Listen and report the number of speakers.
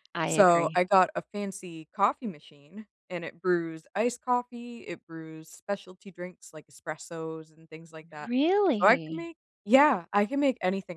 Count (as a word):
two